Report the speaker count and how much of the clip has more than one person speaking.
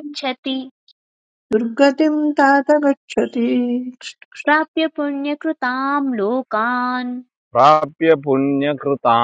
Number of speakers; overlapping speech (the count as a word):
three, no overlap